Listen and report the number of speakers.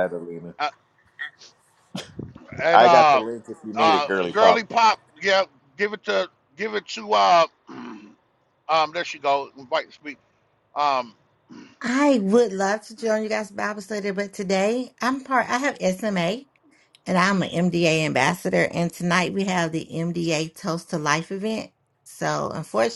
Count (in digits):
3